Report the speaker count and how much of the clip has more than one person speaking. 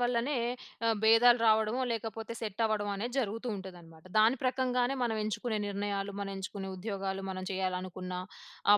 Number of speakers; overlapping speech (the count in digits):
1, no overlap